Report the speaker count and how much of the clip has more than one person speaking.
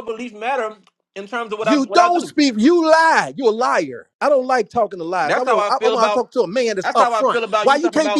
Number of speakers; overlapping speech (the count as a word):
two, about 36%